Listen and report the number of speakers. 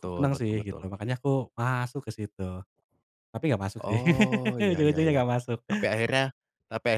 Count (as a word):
two